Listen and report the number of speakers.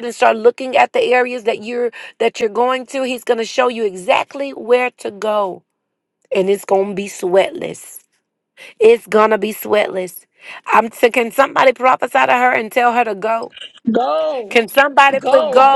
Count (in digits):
2